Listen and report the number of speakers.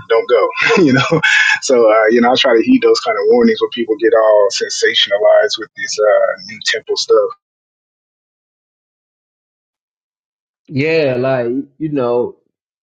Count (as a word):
two